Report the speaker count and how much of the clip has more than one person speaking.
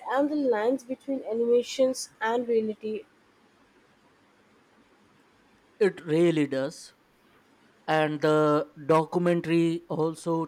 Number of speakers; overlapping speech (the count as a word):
two, no overlap